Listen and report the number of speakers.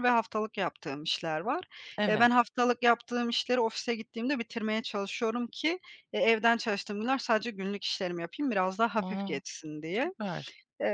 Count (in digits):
2